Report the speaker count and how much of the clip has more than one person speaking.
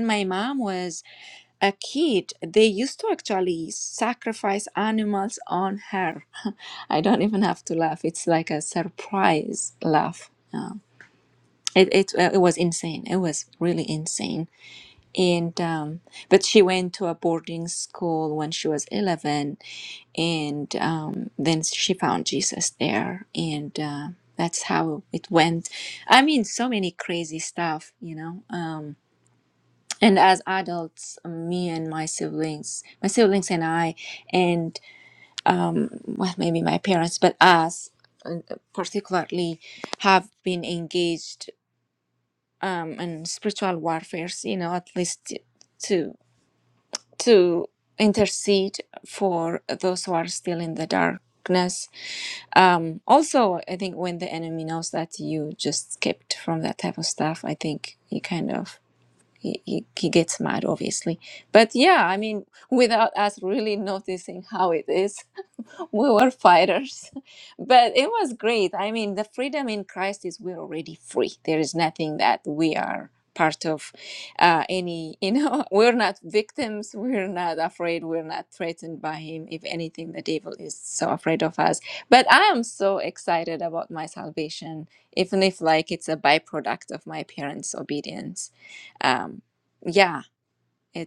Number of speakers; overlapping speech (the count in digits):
1, no overlap